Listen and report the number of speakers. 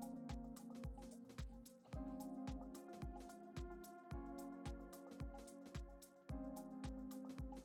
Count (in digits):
0